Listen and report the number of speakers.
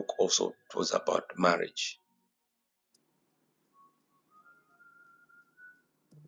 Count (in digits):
1